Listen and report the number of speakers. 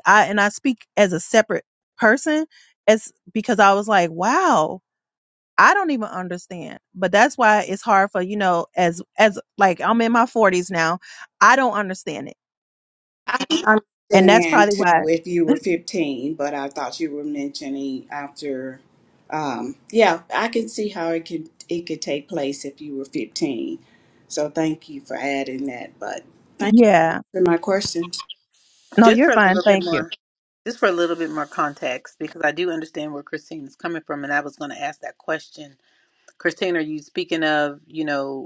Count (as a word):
three